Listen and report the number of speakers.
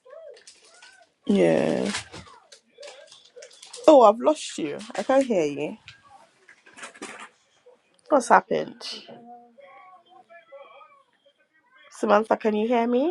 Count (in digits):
1